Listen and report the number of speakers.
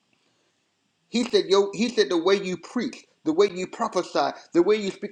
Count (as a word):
one